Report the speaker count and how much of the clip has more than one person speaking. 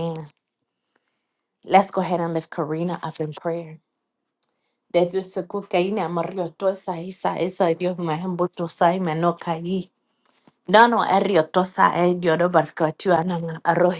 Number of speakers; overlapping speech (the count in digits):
1, no overlap